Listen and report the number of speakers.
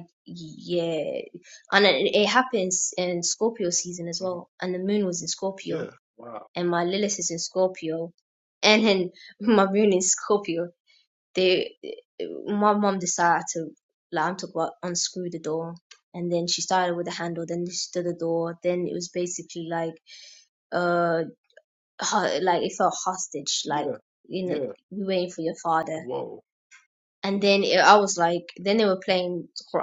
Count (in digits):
2